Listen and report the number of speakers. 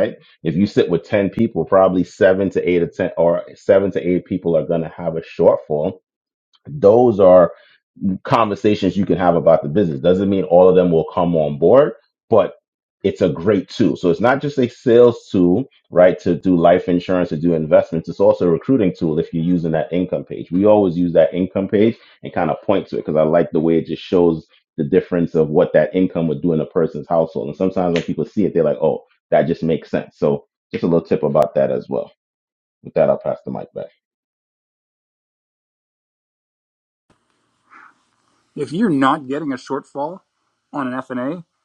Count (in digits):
2